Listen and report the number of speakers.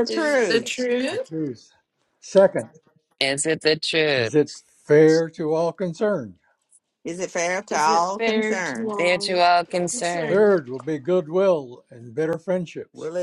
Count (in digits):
4